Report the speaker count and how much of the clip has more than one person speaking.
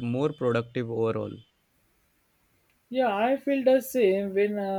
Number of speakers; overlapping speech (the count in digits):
2, no overlap